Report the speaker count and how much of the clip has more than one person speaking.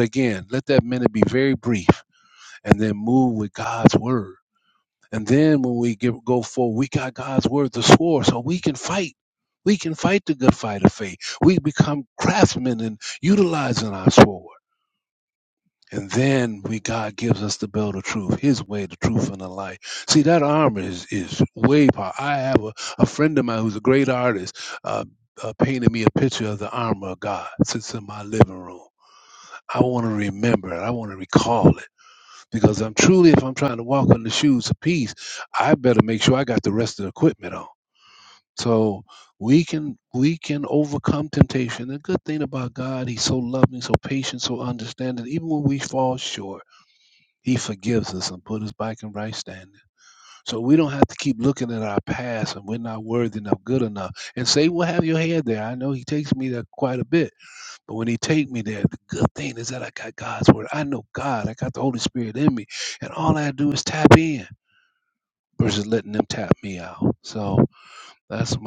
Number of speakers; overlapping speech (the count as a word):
one, no overlap